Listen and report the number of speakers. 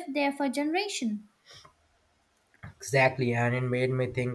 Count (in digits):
2